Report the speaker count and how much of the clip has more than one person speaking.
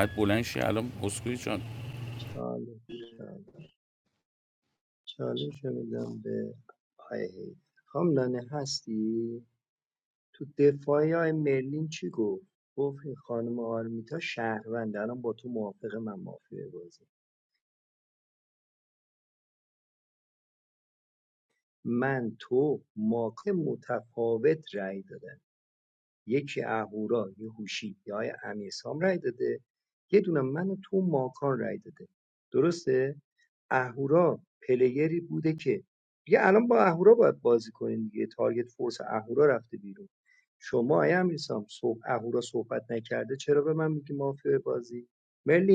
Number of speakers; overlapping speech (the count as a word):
two, no overlap